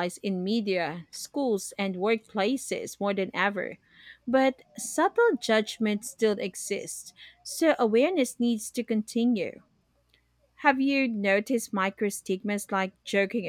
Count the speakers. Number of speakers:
1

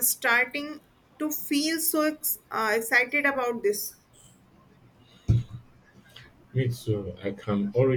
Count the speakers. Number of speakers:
2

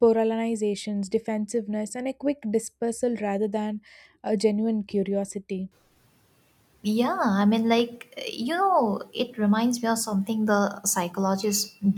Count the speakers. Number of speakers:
2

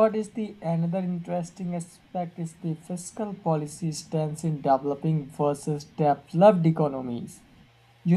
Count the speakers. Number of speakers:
1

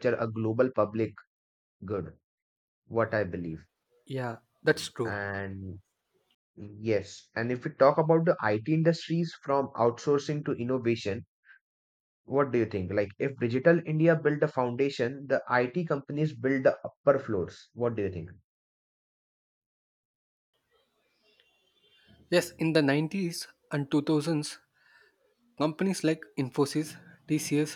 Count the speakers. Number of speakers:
2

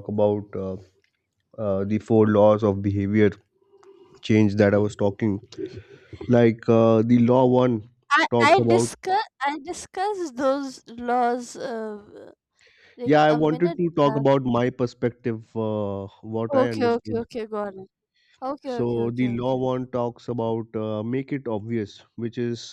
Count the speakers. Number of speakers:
2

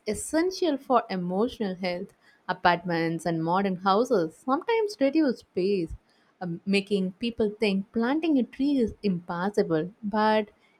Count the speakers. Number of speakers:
1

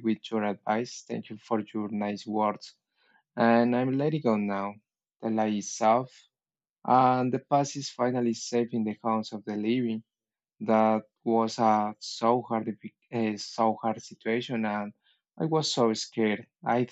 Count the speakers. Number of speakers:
1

